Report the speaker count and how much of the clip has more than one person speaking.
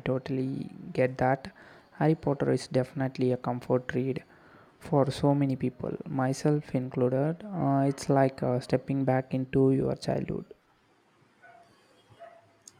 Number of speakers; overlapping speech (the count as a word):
one, no overlap